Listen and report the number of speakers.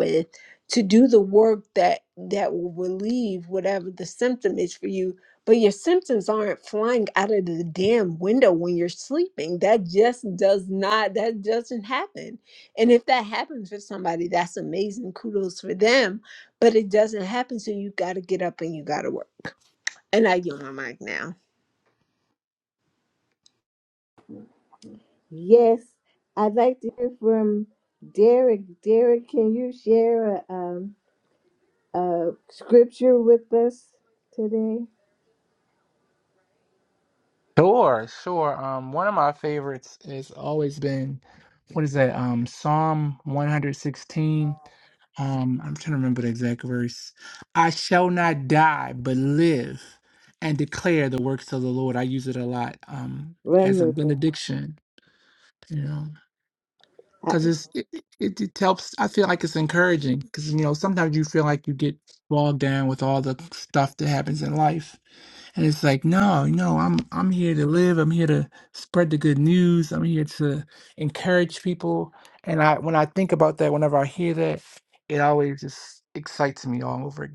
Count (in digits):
3